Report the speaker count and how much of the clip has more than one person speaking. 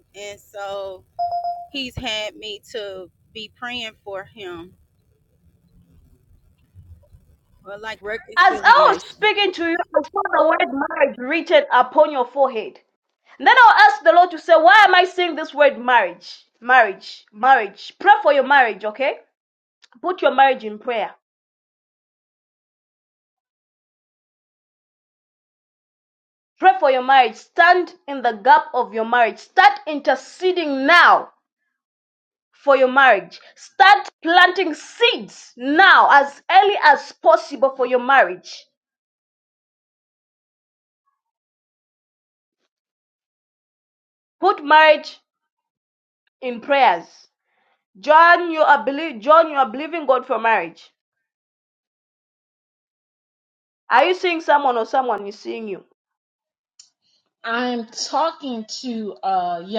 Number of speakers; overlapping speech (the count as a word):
three, about 1%